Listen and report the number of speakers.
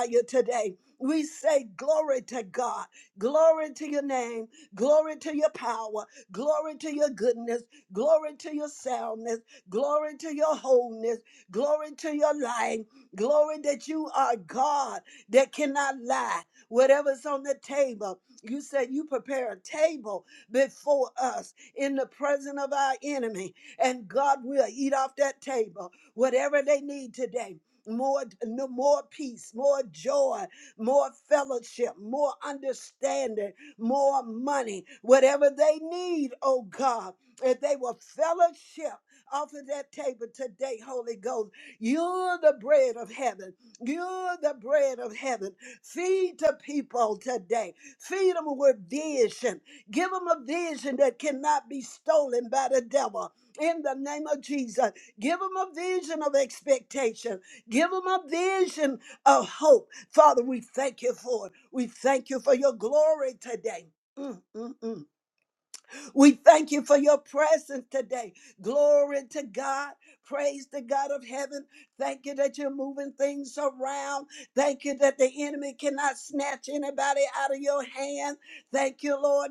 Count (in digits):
1